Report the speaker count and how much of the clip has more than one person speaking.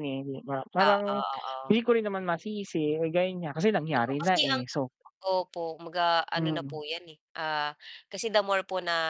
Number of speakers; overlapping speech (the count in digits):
2, about 17%